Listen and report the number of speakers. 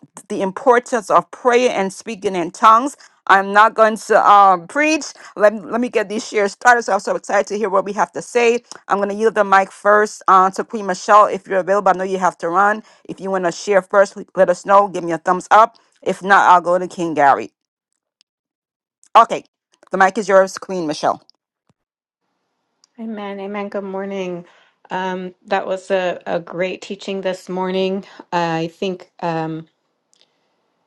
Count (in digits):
2